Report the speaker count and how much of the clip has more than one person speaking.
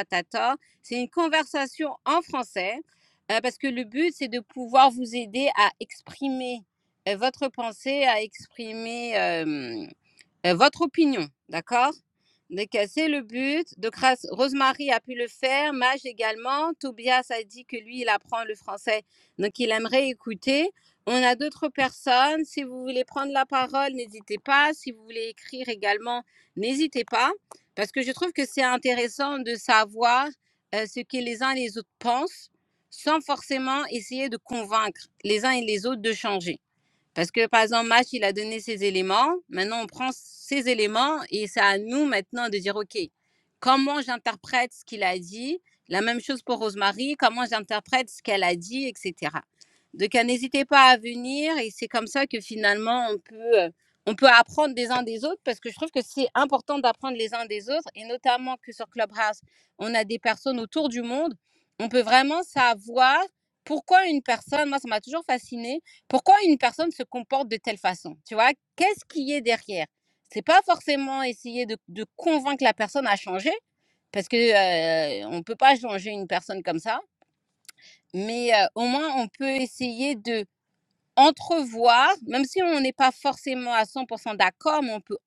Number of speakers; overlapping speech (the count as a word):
one, no overlap